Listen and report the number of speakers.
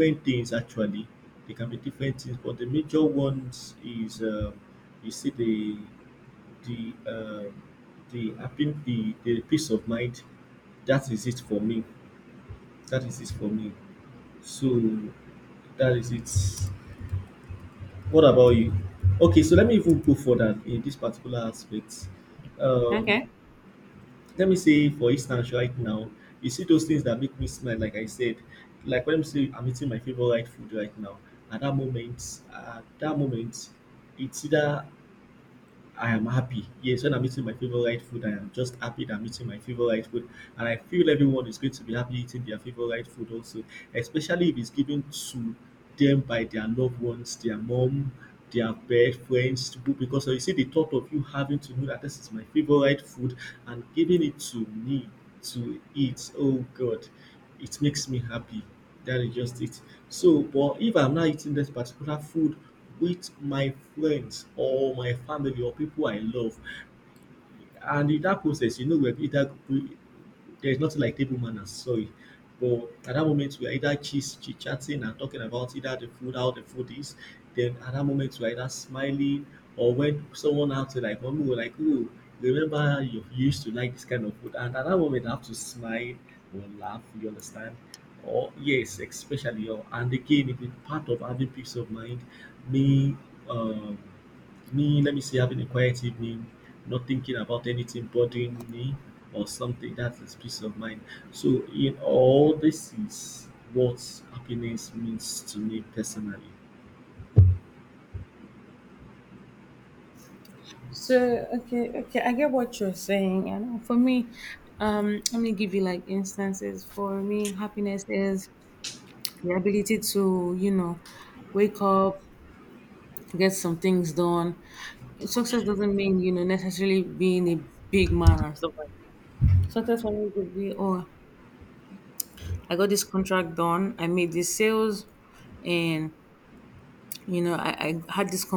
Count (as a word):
two